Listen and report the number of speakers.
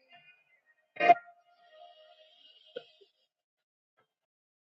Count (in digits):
0